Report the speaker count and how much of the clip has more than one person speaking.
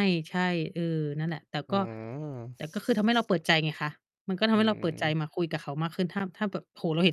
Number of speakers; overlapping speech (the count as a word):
two, about 9%